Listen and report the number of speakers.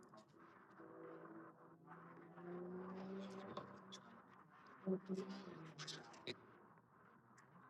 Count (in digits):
0